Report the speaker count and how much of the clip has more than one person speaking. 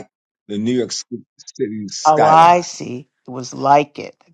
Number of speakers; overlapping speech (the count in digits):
2, about 14%